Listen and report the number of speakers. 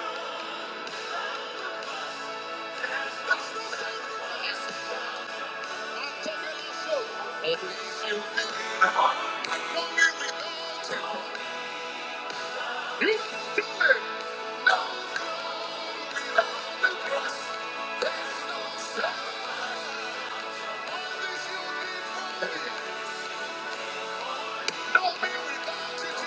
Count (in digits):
0